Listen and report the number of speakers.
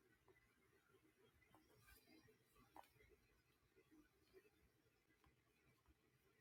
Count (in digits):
0